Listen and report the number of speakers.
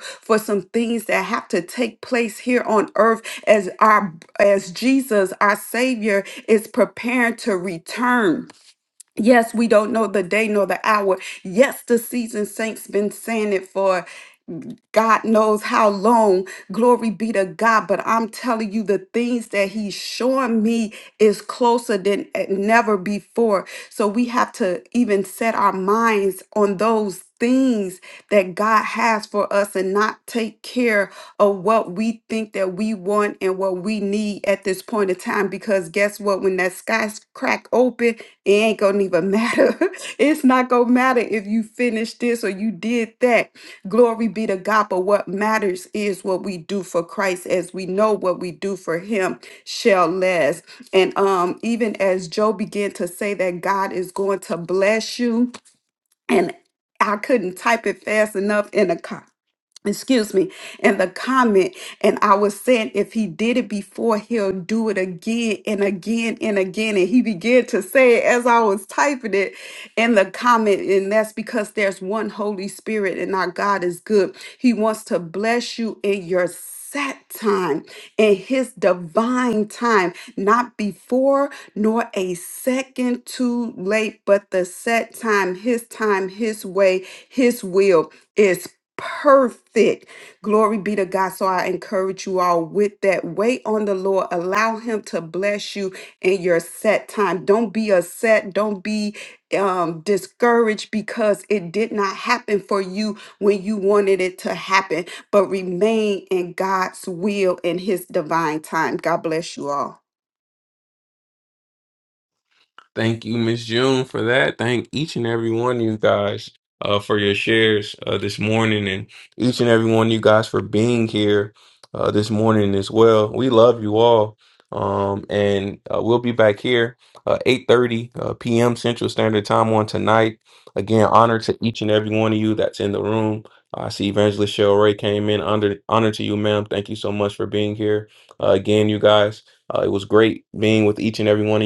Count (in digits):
2